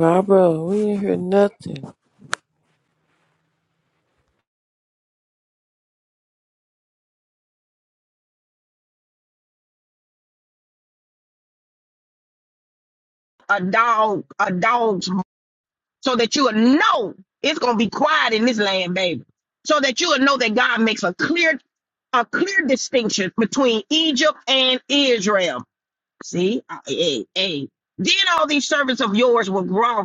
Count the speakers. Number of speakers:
2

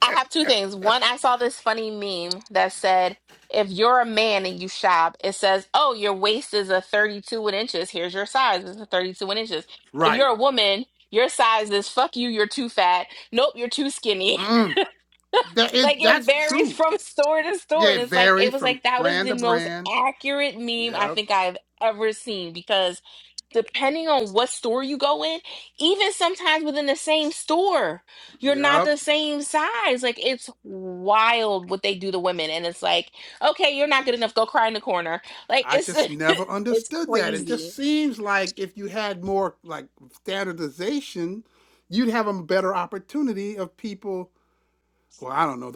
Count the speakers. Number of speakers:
2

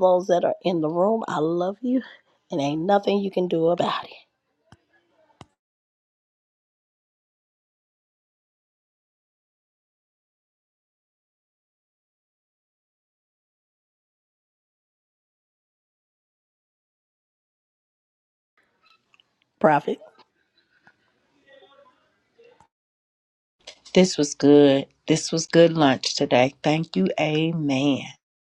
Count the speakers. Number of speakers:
2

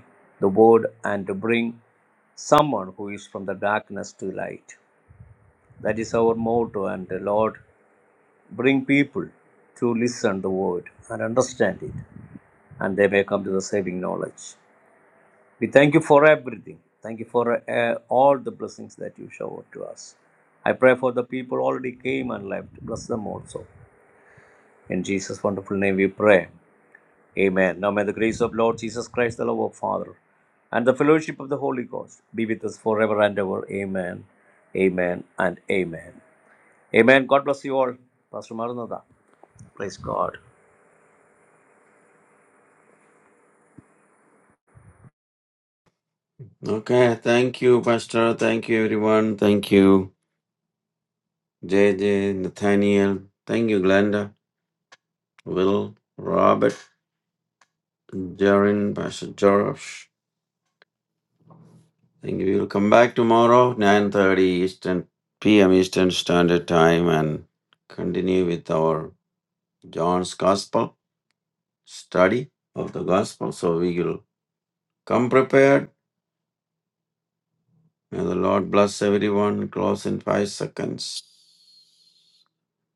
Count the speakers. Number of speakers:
2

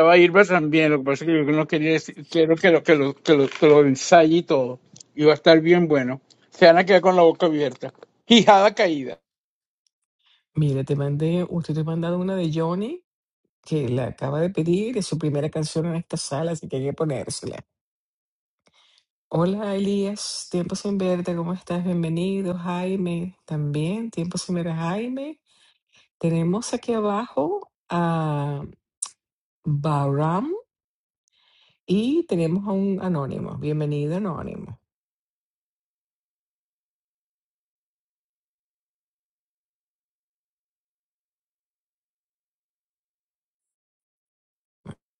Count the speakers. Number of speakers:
2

